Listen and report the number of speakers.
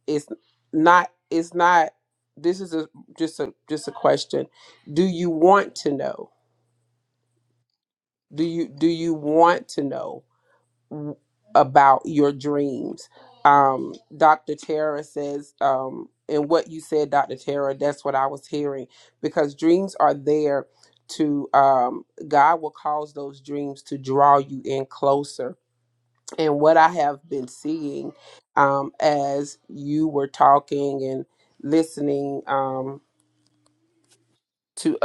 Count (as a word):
one